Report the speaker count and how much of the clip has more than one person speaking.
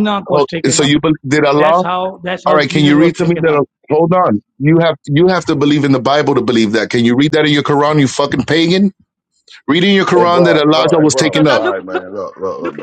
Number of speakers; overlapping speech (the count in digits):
3, about 35%